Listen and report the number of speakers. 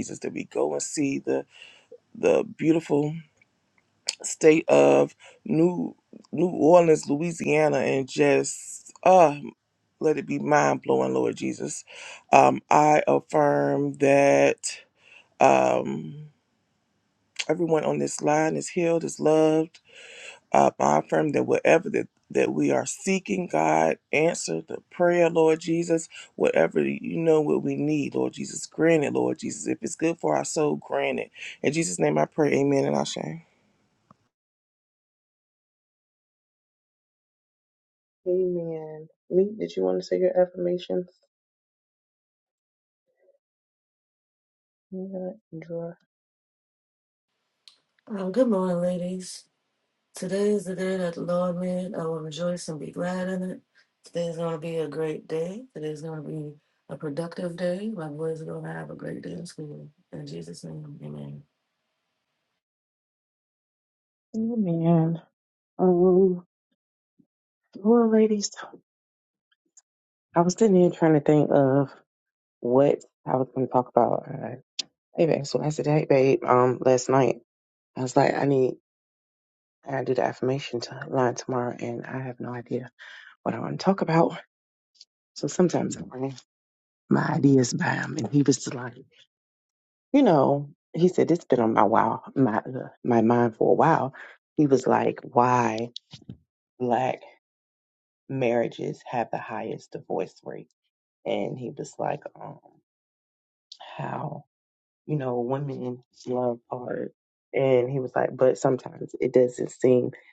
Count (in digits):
3